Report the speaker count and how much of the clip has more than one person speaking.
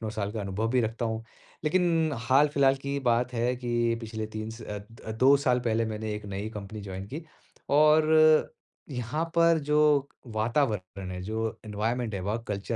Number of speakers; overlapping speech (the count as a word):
one, no overlap